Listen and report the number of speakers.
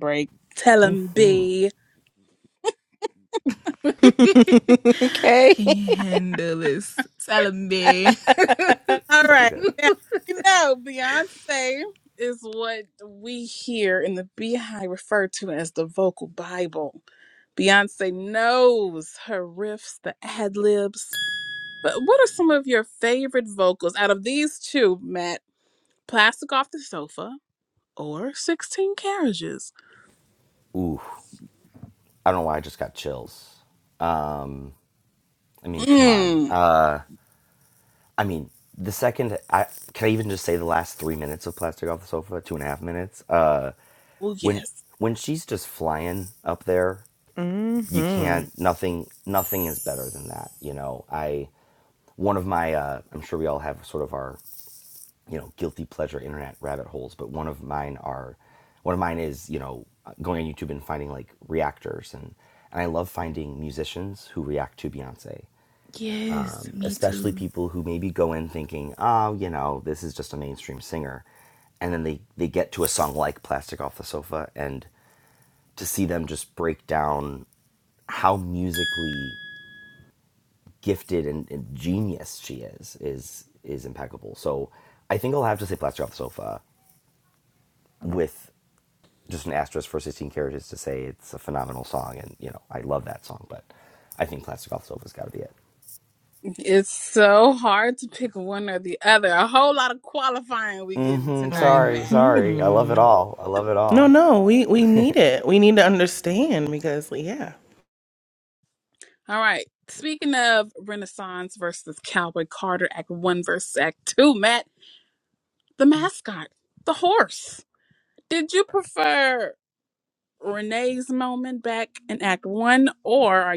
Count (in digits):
5